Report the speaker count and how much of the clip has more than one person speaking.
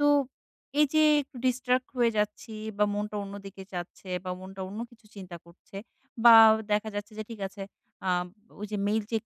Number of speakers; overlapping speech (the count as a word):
one, no overlap